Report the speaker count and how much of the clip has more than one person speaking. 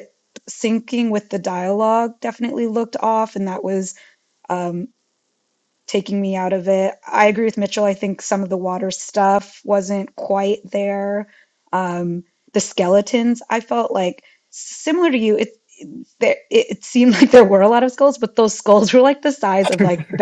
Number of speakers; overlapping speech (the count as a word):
one, no overlap